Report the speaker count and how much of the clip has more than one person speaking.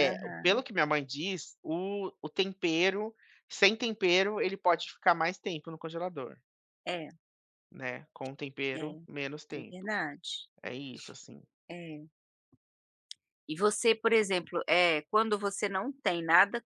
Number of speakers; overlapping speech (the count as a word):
two, about 6%